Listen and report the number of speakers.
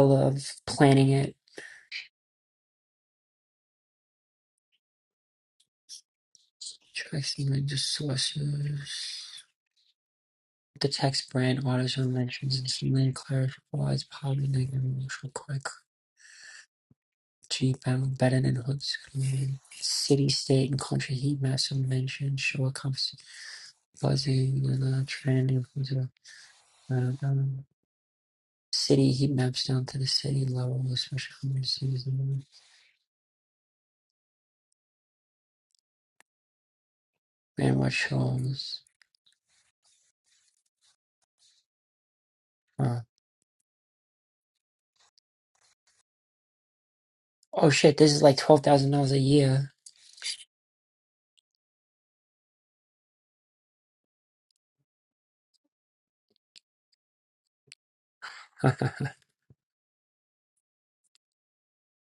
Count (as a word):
one